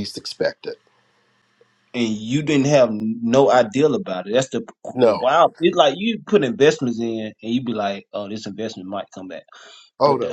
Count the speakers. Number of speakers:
2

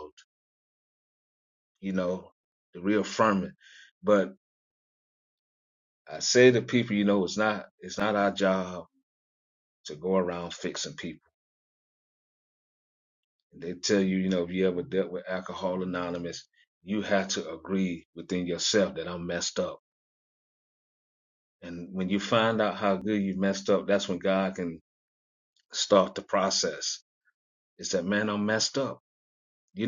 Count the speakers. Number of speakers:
1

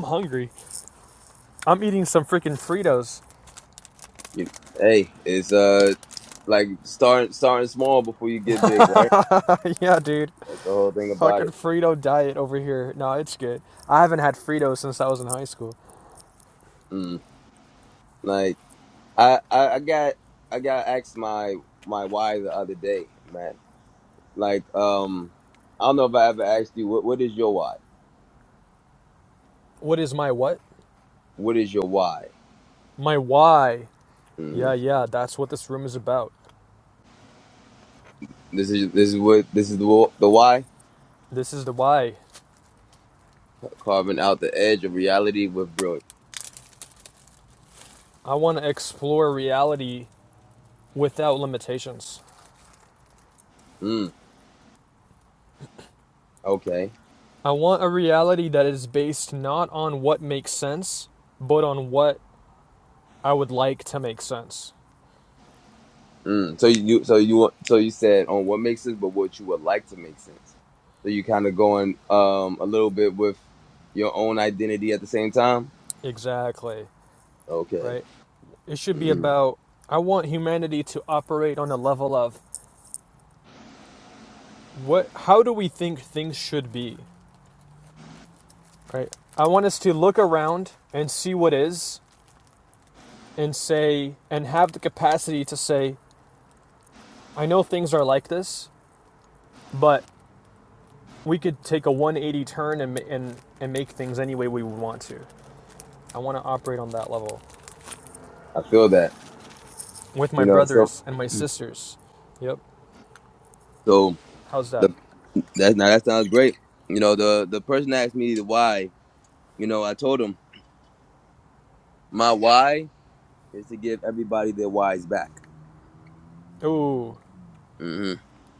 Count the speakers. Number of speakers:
2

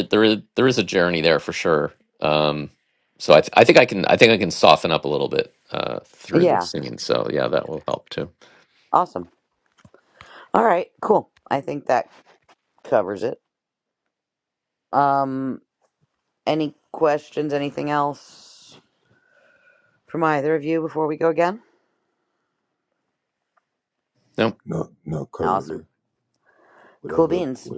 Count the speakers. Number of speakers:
3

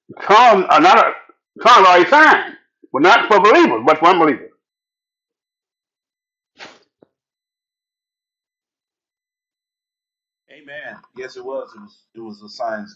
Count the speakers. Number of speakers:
2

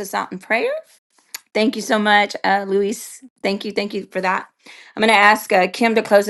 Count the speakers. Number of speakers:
1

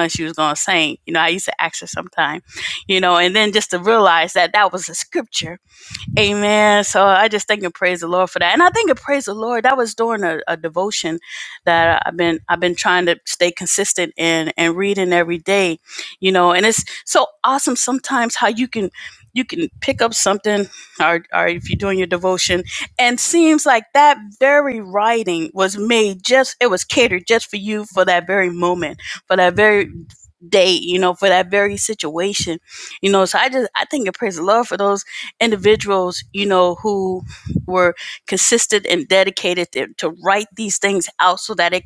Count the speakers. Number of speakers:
1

